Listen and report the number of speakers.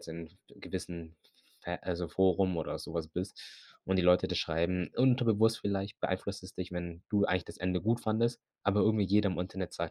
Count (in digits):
1